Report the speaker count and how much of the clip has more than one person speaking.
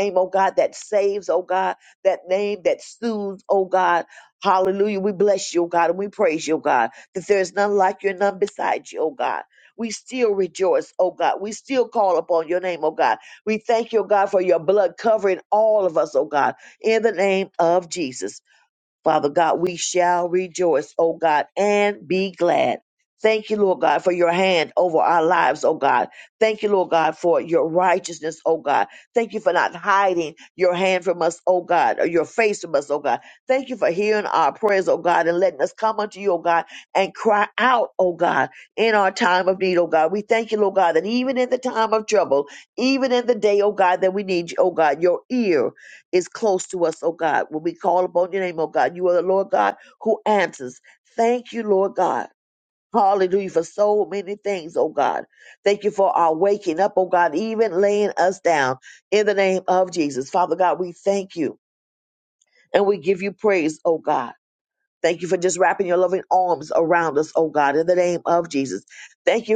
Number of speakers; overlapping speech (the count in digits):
1, no overlap